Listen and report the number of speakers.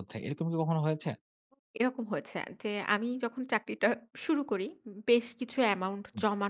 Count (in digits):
2